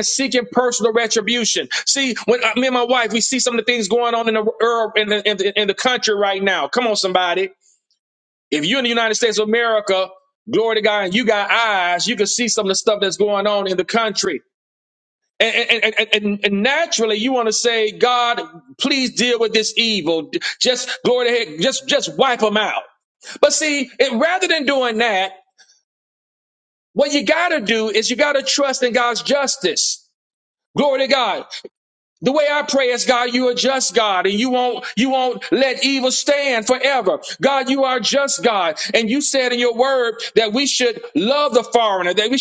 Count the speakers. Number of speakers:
one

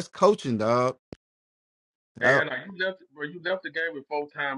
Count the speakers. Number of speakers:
two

